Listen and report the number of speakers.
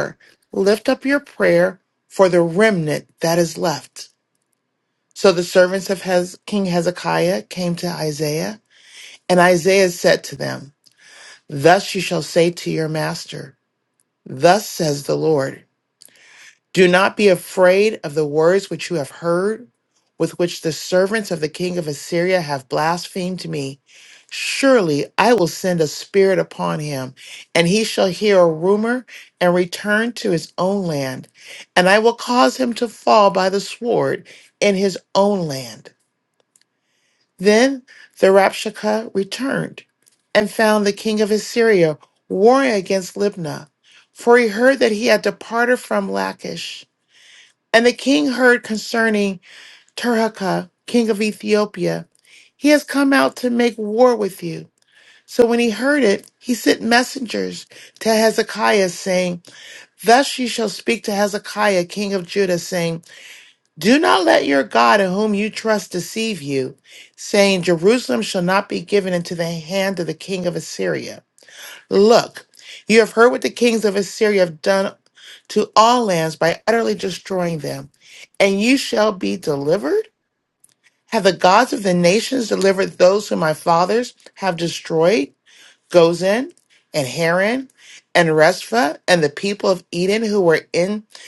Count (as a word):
one